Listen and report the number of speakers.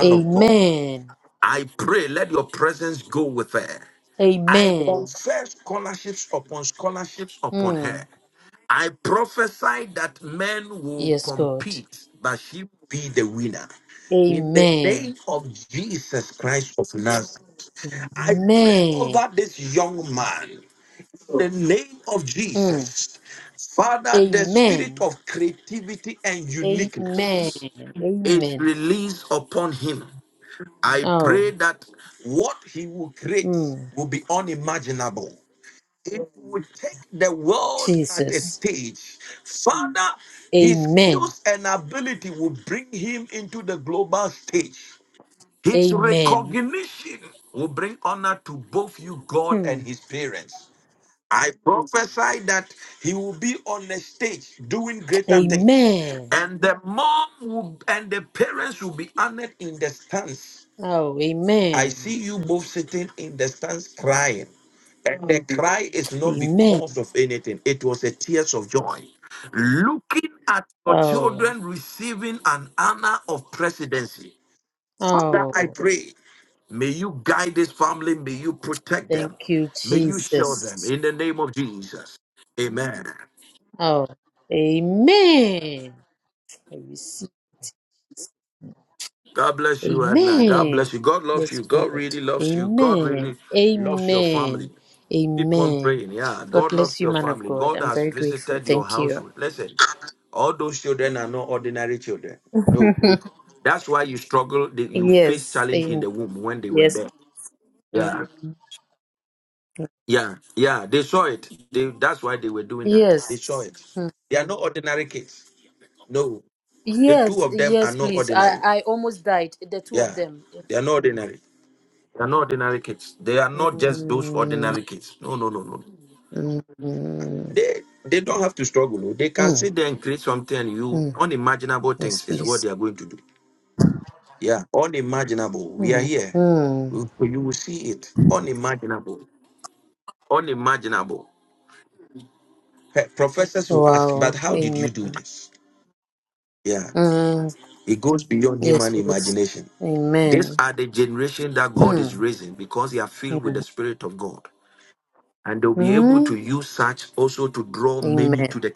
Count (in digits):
2